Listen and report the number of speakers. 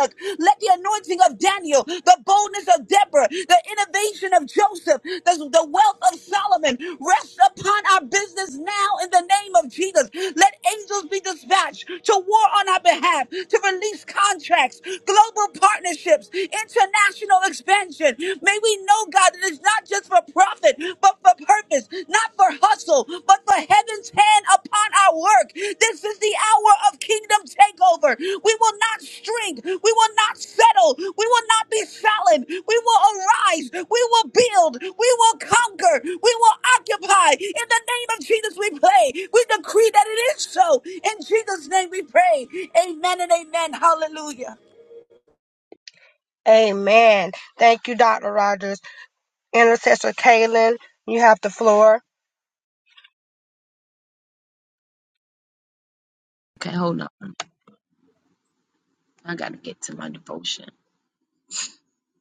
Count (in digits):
3